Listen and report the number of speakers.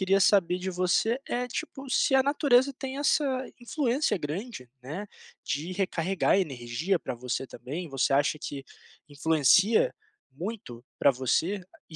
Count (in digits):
1